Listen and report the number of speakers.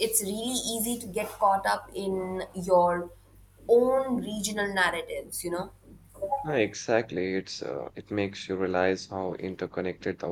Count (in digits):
2